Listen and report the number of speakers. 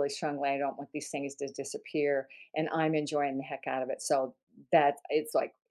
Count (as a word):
one